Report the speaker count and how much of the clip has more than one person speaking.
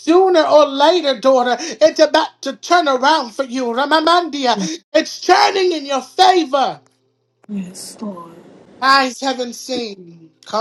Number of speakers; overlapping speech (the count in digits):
2, about 1%